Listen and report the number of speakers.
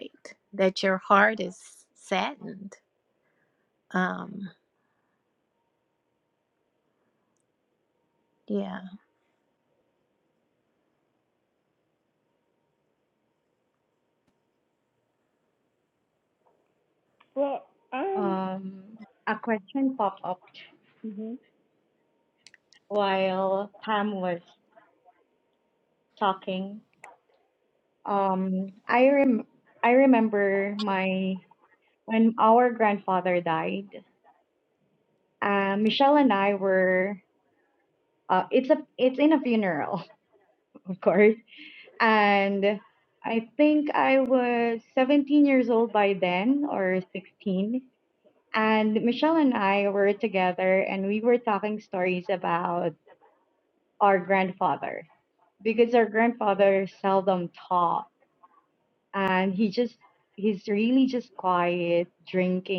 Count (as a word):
three